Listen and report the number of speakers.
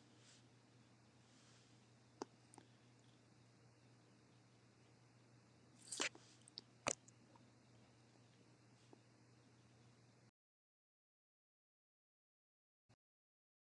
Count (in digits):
0